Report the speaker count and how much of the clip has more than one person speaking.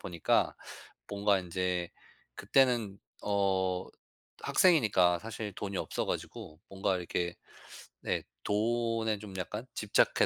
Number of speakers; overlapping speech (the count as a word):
one, no overlap